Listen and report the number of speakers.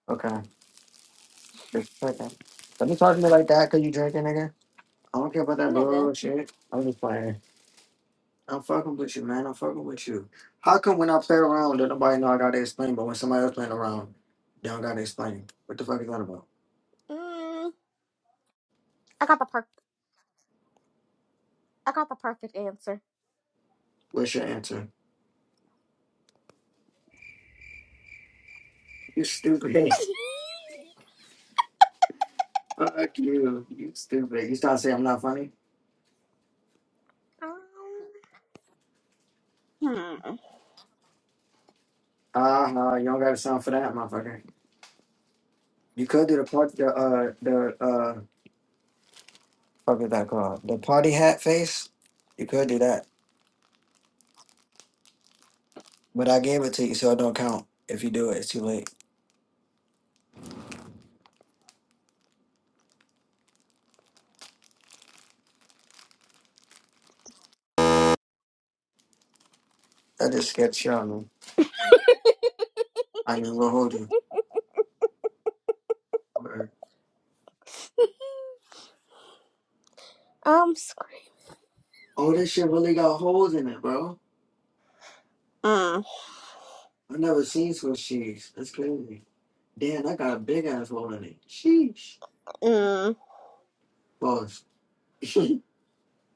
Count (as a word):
two